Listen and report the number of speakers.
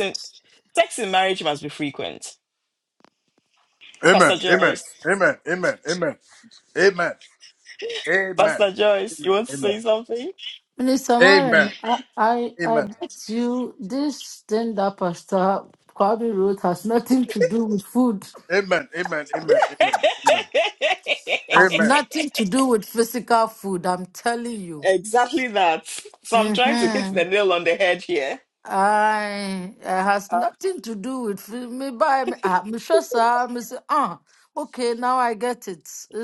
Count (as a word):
three